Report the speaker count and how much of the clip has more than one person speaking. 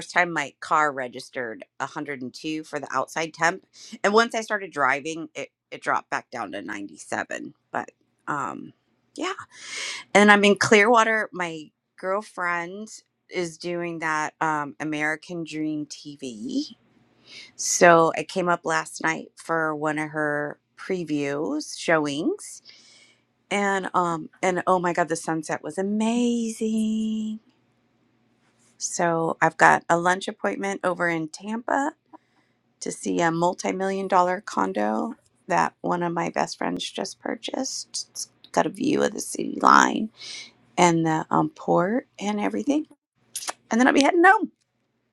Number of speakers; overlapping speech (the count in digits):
1, no overlap